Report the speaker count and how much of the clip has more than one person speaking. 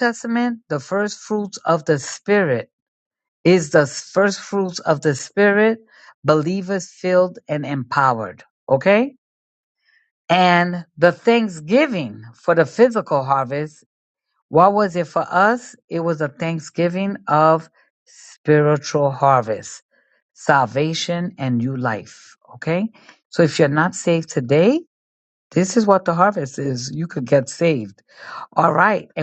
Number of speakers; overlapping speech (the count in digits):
1, no overlap